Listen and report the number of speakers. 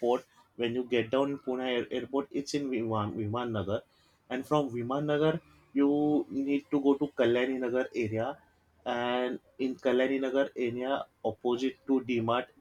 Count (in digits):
1